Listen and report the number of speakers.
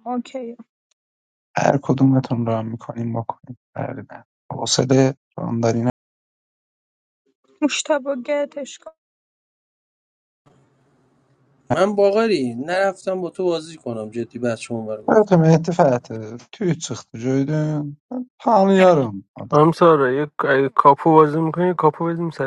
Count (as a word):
four